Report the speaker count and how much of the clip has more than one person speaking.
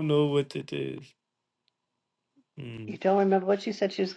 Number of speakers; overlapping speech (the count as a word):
two, under 1%